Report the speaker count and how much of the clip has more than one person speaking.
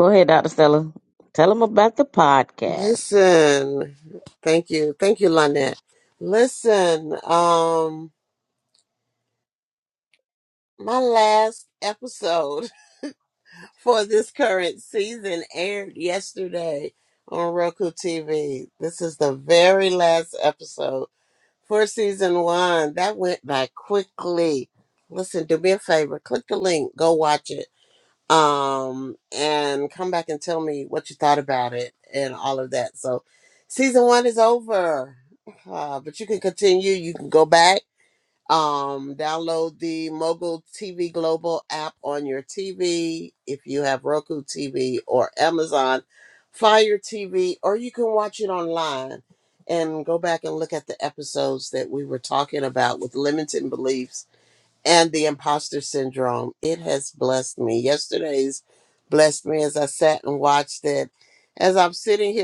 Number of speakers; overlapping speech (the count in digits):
2, about 1%